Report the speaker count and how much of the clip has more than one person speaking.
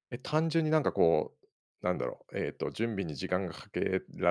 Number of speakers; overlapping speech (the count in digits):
1, no overlap